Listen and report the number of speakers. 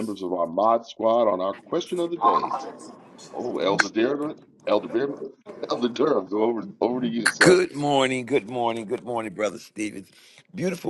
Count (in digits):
2